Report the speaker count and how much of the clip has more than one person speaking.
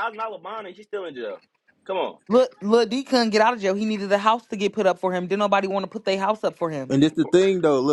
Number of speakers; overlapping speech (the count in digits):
3, no overlap